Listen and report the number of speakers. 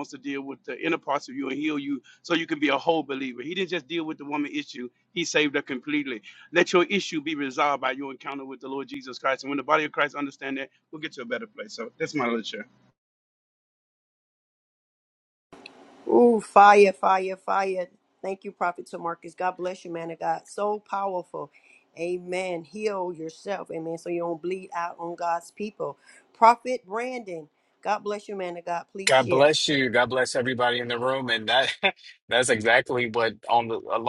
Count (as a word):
three